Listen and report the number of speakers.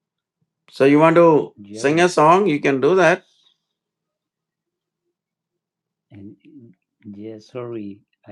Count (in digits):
2